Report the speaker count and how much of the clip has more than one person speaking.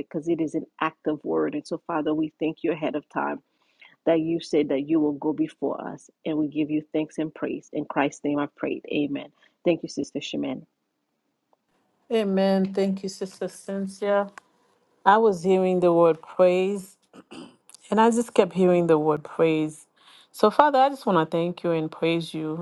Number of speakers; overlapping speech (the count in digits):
2, no overlap